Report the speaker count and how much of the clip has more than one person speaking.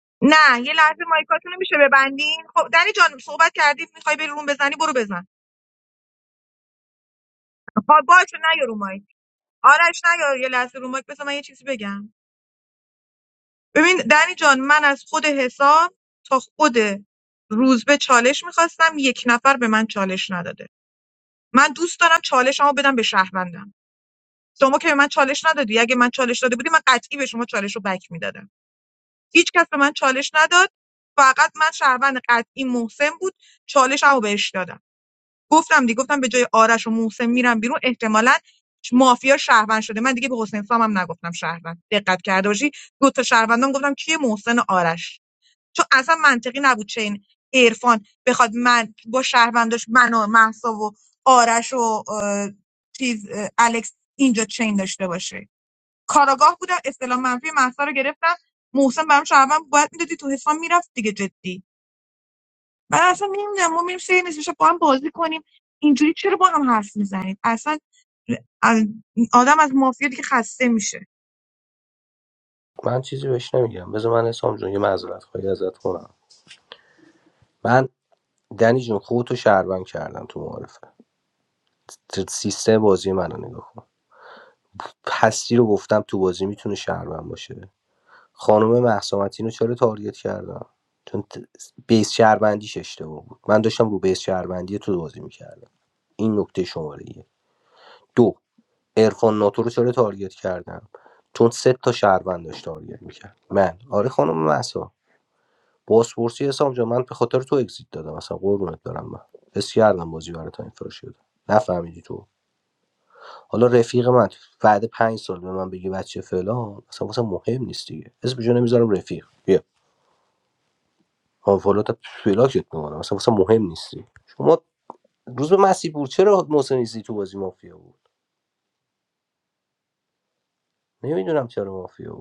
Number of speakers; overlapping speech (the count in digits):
2, no overlap